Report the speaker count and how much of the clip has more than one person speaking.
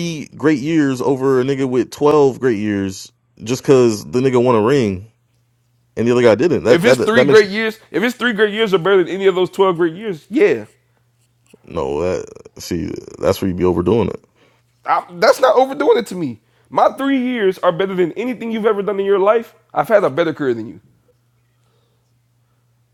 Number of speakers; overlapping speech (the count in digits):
2, about 3%